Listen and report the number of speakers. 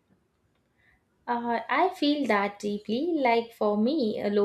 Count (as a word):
one